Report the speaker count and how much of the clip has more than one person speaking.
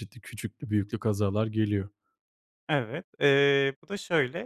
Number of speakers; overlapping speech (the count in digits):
2, no overlap